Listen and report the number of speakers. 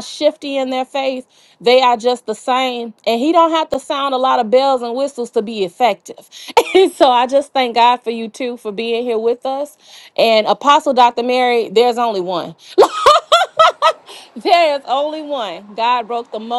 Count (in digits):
1